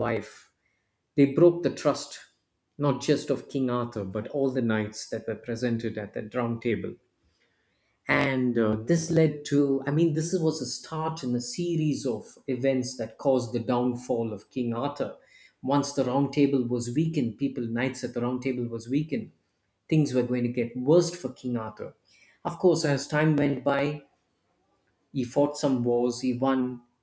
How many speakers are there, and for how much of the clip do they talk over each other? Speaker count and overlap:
1, no overlap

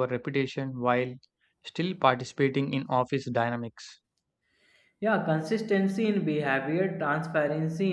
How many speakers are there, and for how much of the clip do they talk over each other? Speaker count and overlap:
2, no overlap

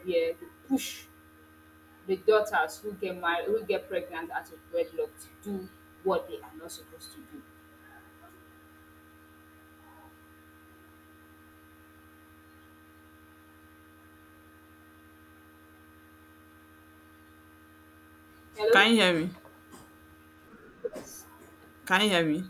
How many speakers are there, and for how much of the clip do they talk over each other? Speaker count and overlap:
2, about 1%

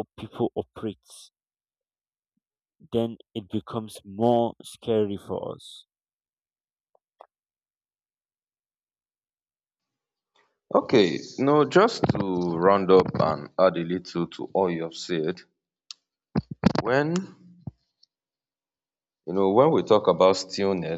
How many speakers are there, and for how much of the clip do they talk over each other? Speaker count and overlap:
2, no overlap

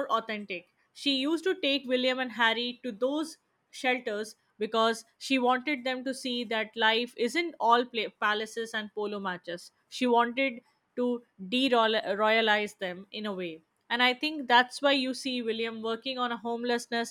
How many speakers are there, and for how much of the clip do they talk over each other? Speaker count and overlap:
1, no overlap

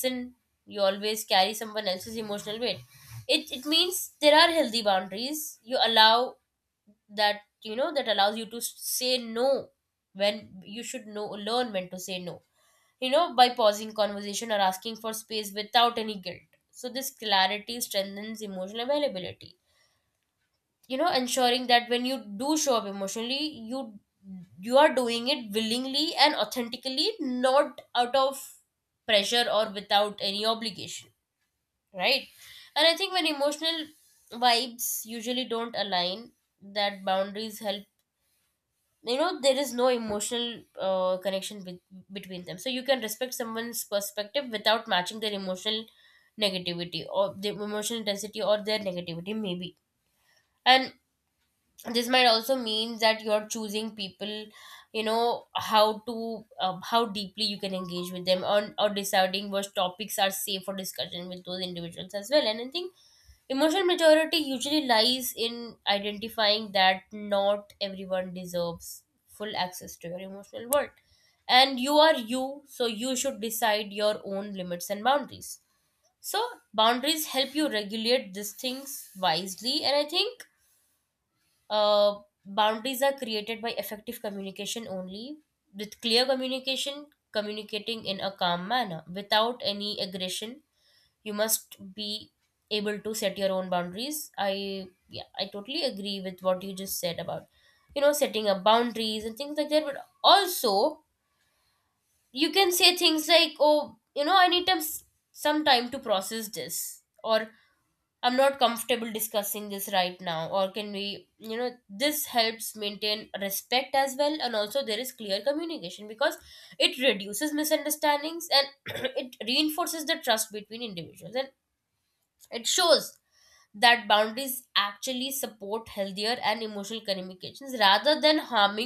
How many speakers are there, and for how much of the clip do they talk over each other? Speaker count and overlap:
1, no overlap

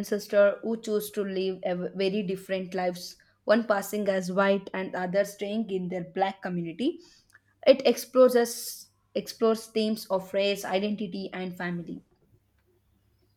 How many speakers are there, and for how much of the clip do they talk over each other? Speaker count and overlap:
1, no overlap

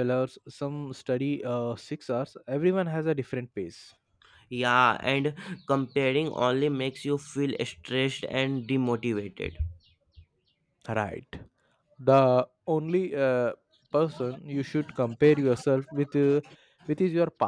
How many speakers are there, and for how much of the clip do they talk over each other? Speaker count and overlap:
2, no overlap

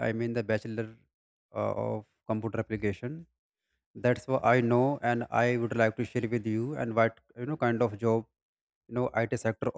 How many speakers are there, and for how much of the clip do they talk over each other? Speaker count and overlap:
1, no overlap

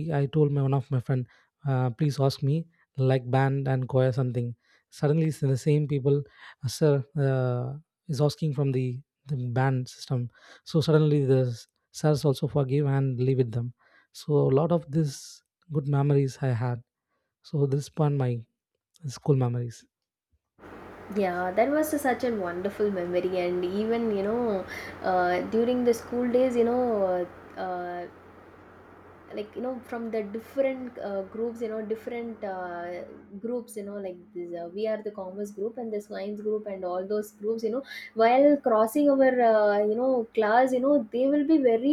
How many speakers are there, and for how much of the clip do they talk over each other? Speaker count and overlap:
2, no overlap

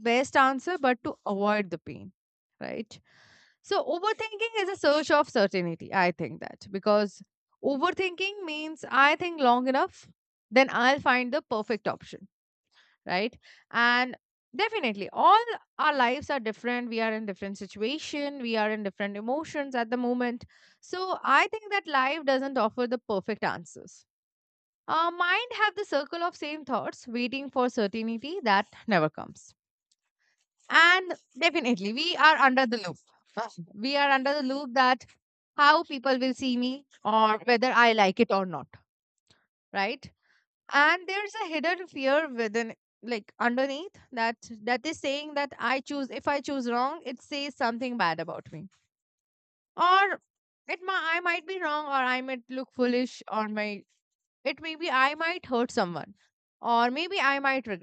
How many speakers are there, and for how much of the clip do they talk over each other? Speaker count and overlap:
1, no overlap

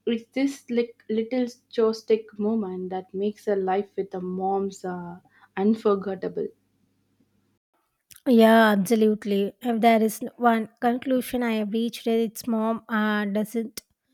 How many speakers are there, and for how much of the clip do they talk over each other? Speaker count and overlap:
2, no overlap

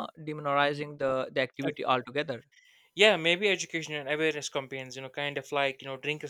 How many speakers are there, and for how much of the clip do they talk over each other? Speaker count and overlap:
2, no overlap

